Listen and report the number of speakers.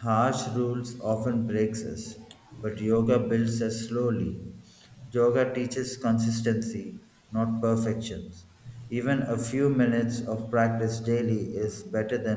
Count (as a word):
one